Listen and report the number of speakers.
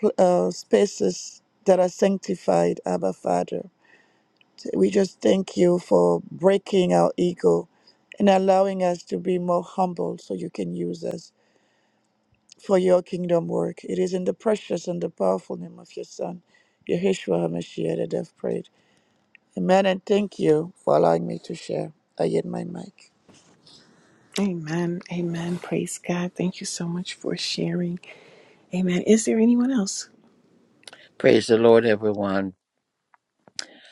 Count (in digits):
3